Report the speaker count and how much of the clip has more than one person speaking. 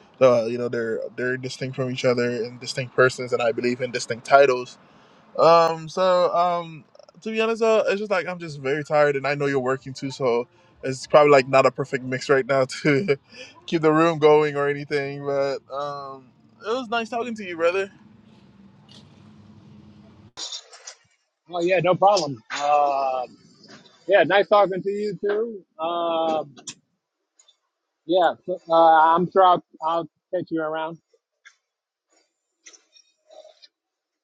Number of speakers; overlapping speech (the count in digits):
2, no overlap